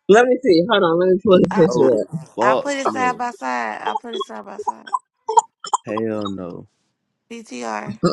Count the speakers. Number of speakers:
three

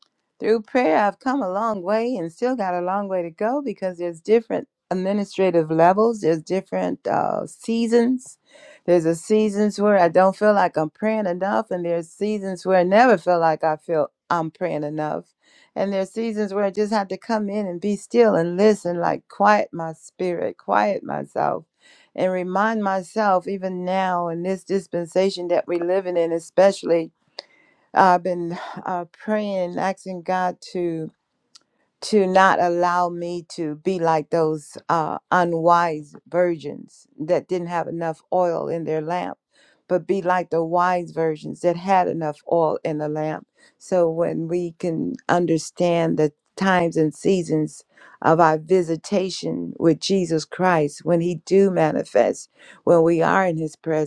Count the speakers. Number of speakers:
one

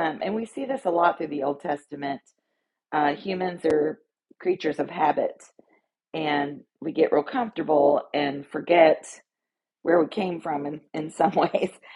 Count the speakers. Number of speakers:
one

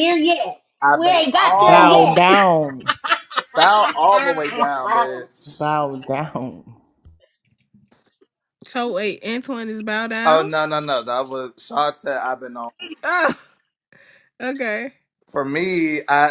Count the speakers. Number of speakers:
four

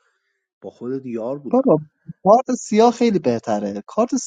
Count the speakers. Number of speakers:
two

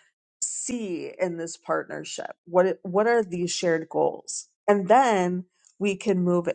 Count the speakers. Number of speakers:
one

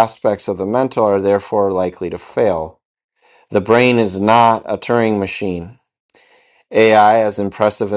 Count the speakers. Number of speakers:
one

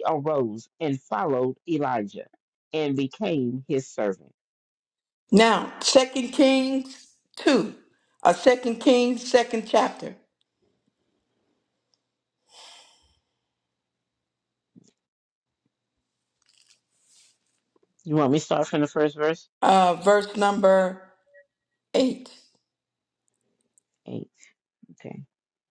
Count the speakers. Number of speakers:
two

